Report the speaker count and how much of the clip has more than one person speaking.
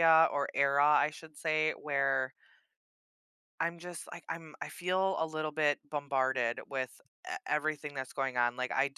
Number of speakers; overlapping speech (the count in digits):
1, no overlap